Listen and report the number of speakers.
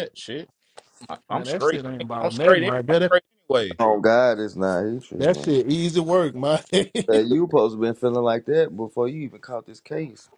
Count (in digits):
3